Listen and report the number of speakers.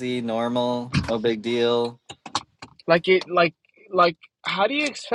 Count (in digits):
2